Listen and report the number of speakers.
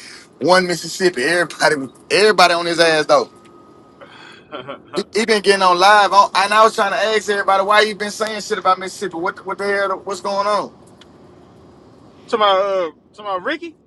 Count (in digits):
2